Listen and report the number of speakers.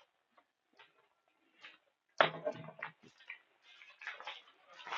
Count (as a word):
zero